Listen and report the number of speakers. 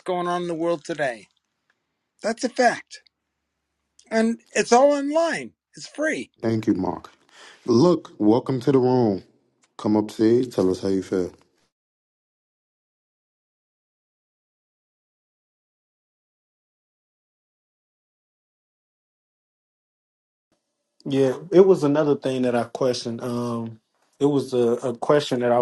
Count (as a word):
three